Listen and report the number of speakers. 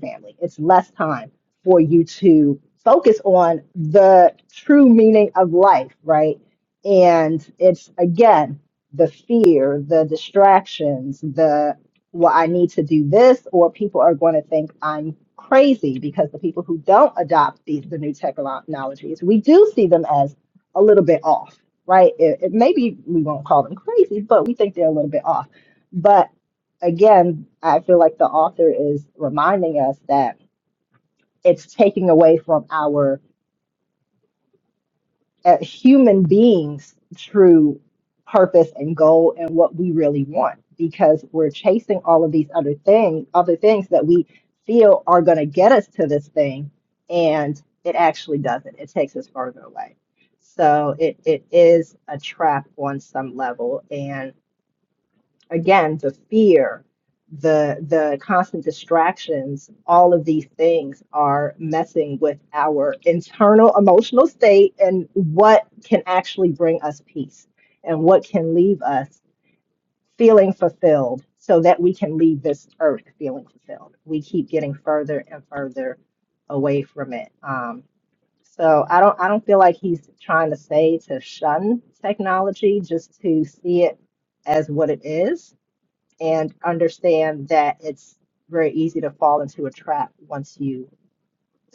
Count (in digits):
1